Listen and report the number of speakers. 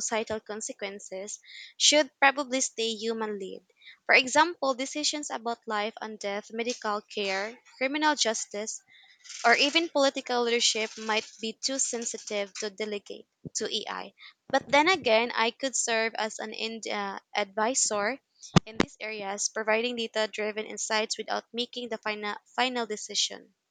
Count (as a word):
one